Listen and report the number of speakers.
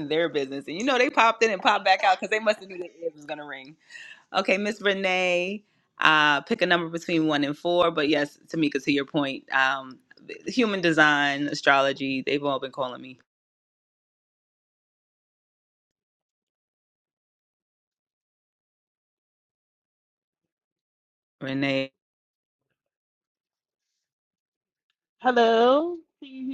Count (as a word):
two